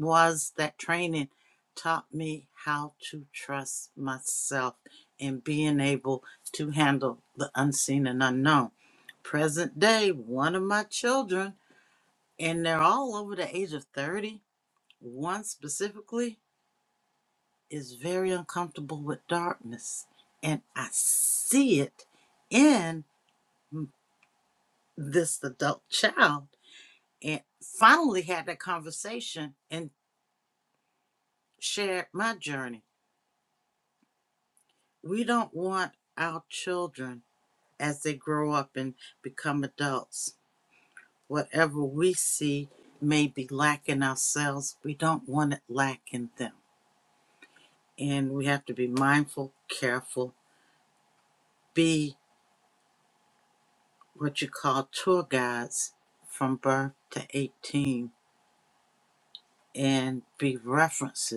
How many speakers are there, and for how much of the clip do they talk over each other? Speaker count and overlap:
1, no overlap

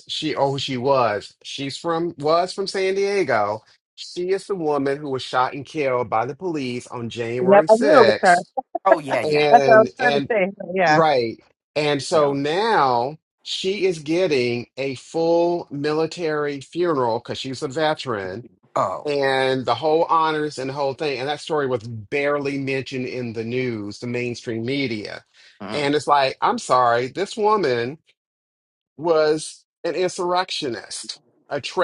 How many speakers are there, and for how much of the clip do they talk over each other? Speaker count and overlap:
3, about 8%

